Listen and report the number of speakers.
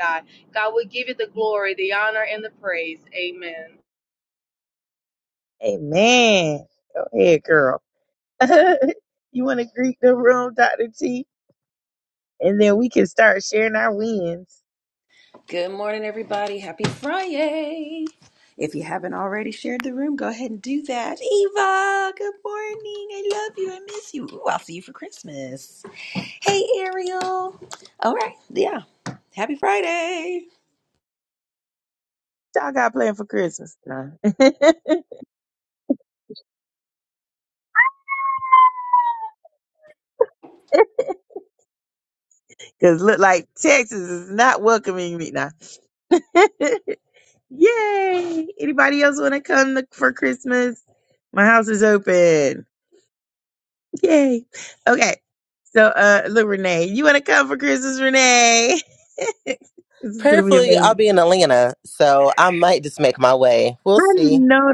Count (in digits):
4